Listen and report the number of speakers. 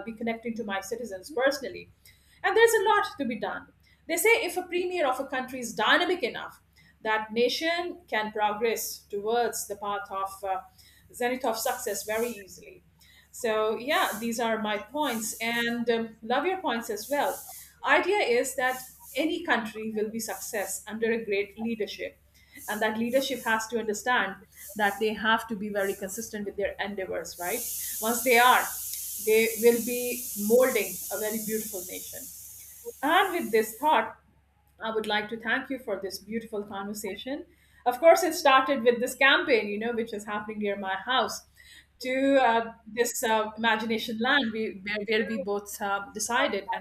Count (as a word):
one